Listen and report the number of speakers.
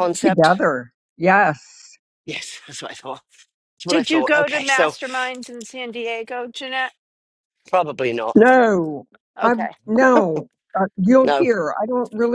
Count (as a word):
three